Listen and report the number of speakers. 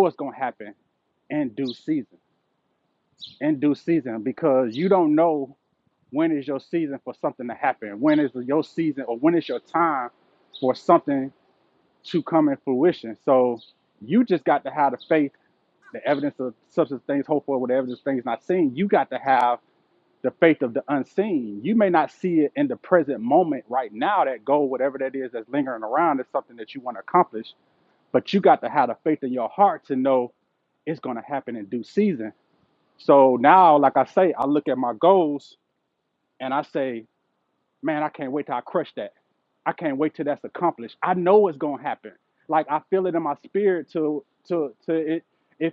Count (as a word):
one